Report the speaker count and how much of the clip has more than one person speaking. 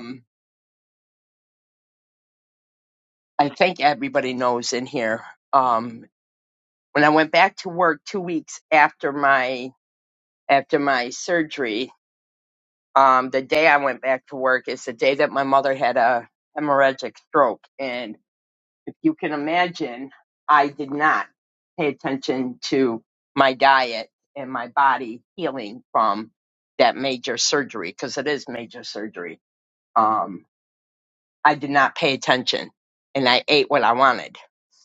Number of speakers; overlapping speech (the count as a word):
one, no overlap